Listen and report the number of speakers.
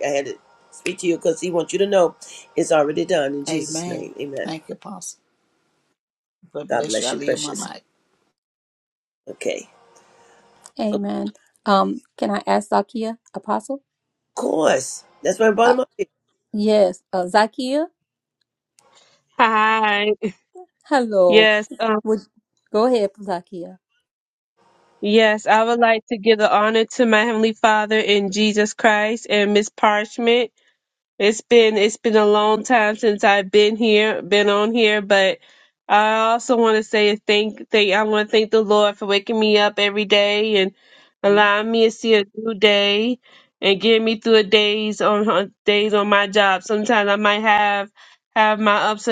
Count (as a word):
four